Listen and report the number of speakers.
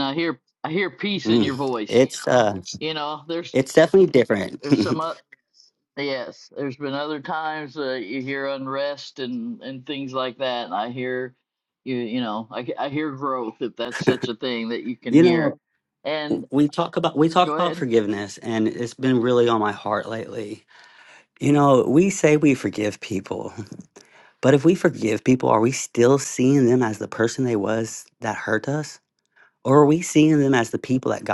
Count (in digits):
2